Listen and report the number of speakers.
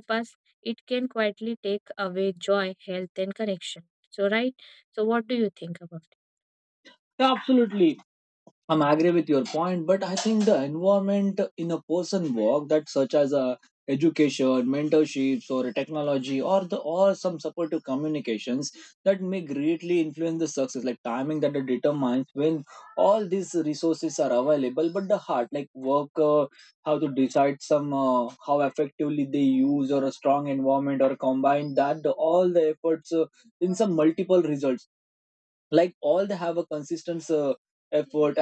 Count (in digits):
2